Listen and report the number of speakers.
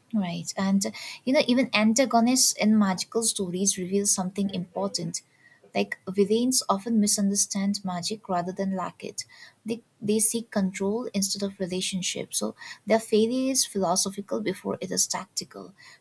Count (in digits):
1